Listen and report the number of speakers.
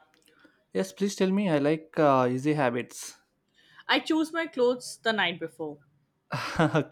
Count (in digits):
2